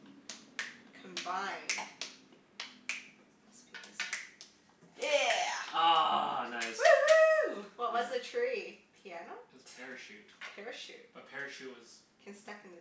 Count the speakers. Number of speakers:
four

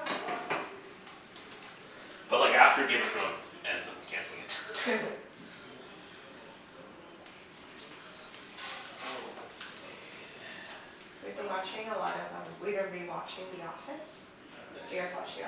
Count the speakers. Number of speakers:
two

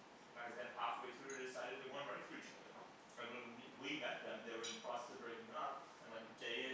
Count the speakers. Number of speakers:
one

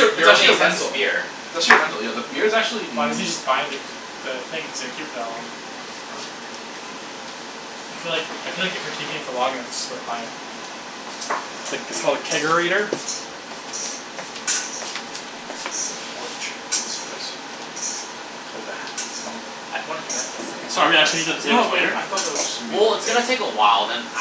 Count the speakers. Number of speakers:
three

